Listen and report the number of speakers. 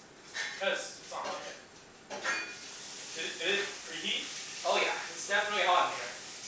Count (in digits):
2